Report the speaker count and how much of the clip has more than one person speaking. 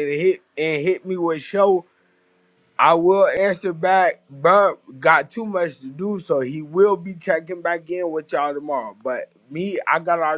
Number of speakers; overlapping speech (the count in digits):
1, no overlap